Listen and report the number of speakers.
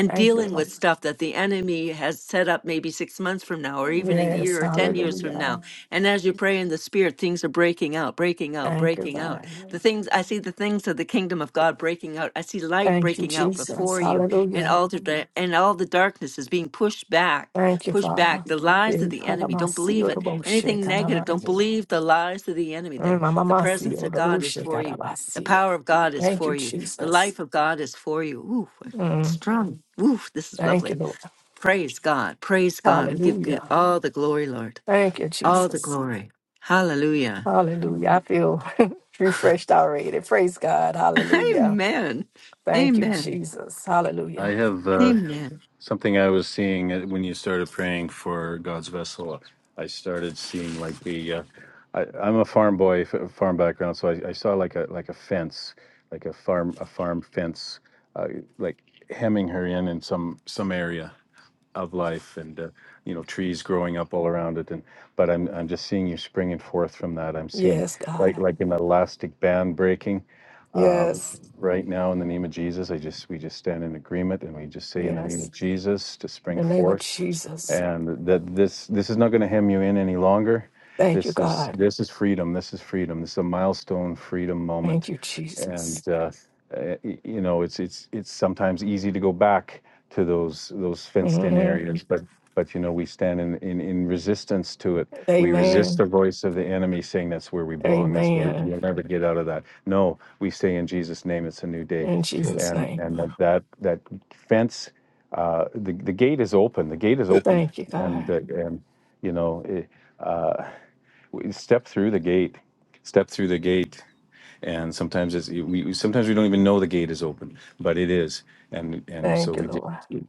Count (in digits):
3